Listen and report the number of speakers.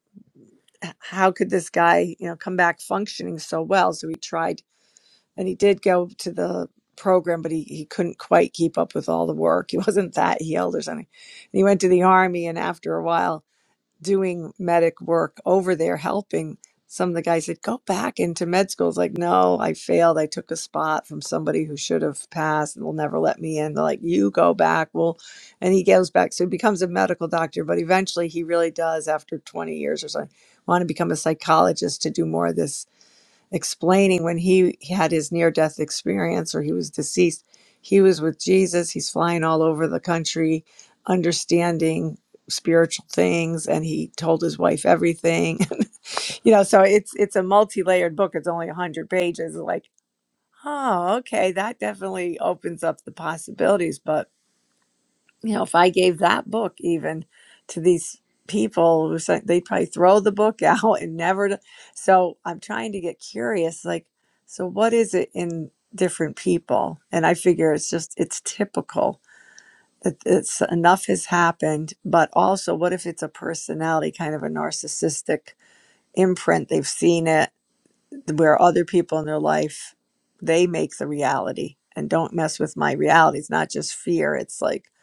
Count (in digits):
1